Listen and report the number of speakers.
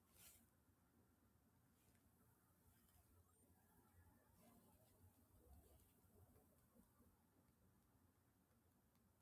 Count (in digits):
0